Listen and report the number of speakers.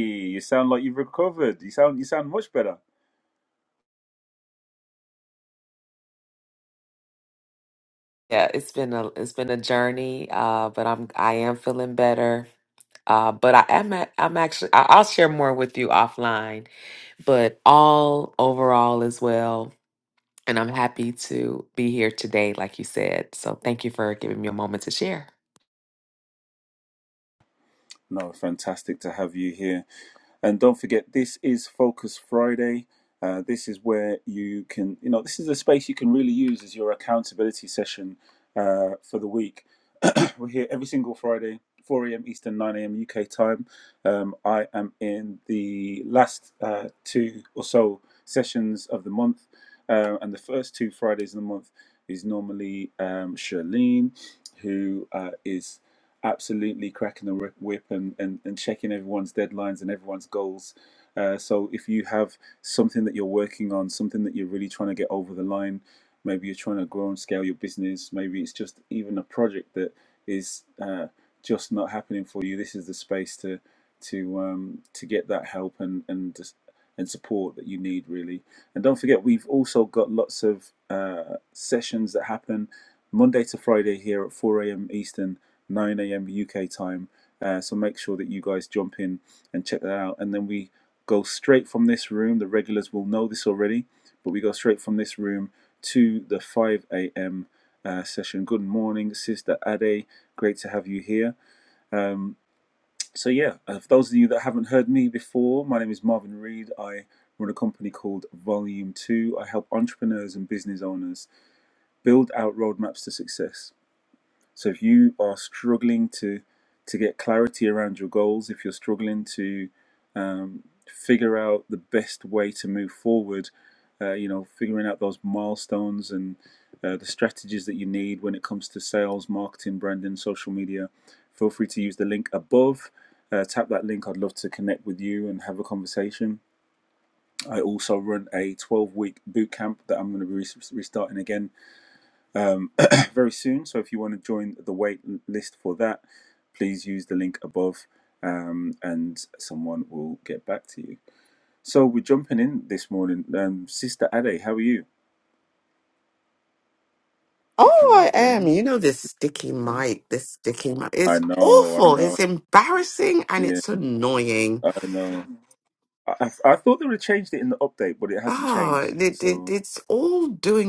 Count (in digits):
3